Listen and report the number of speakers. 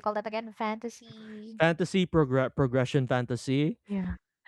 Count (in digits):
2